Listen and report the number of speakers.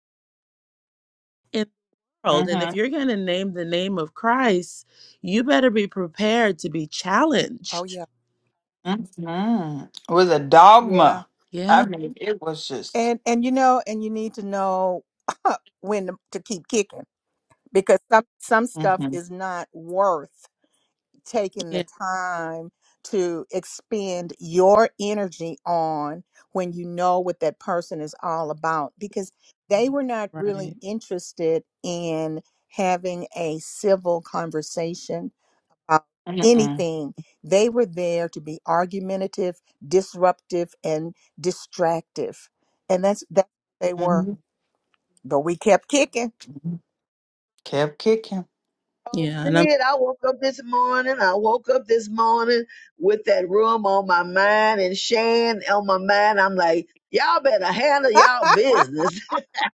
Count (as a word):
four